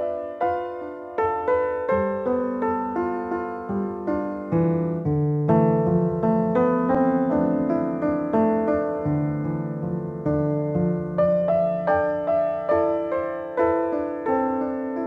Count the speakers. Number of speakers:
0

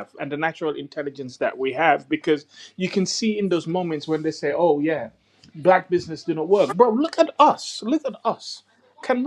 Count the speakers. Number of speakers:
1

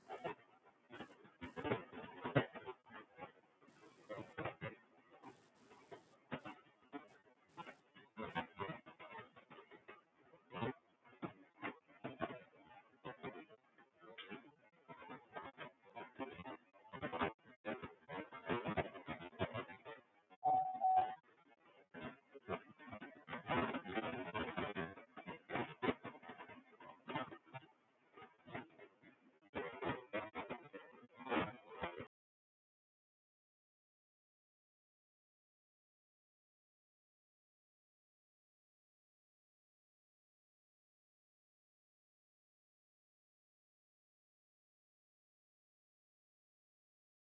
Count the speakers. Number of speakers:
0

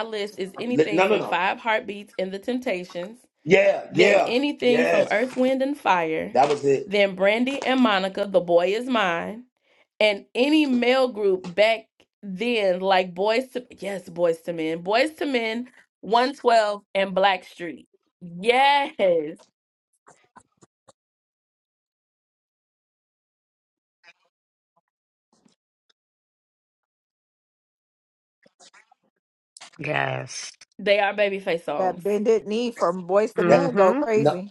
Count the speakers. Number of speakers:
4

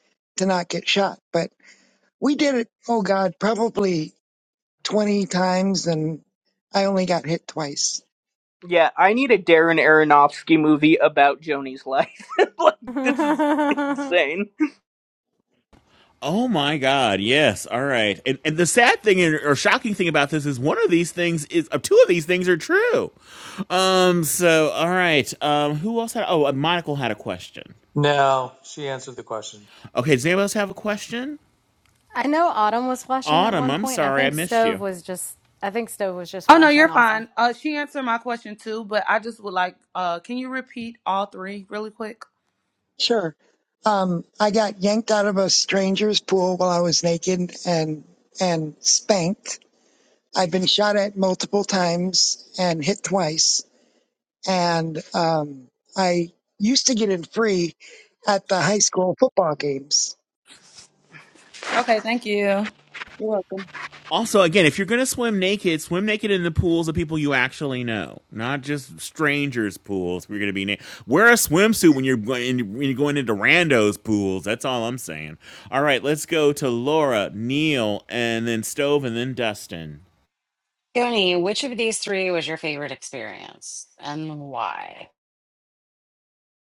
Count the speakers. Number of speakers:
7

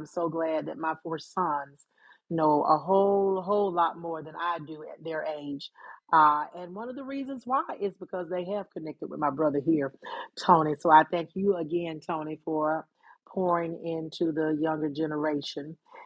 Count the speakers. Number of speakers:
1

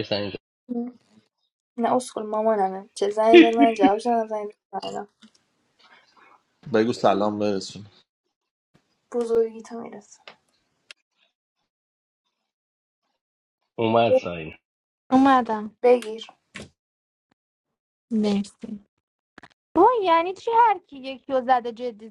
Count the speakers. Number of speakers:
4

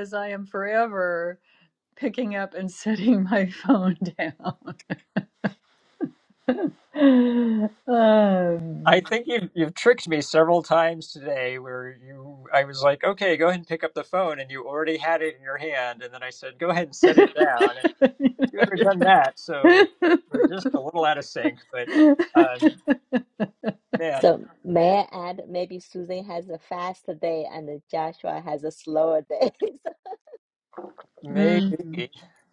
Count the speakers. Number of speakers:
3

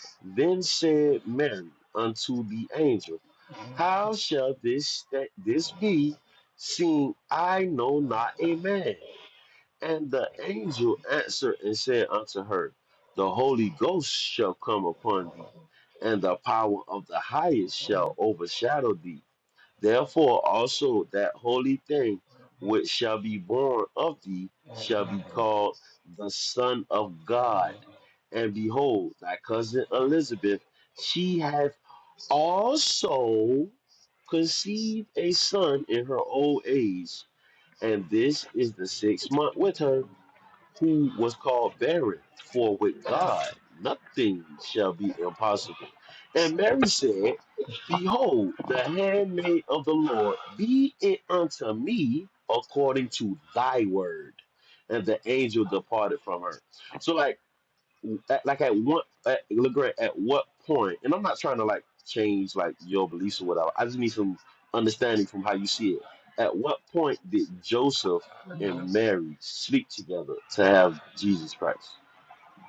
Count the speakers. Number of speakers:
1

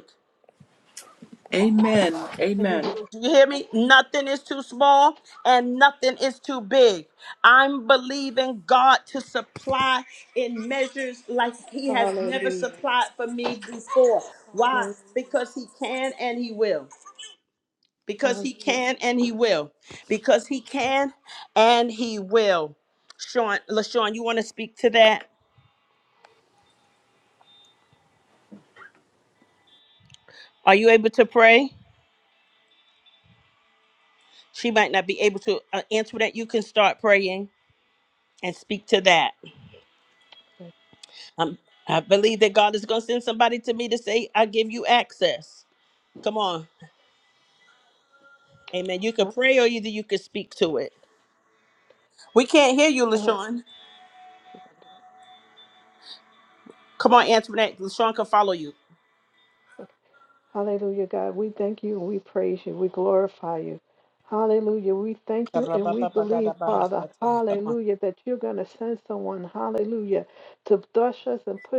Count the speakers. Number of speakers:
3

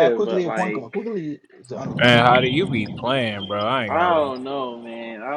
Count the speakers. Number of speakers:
3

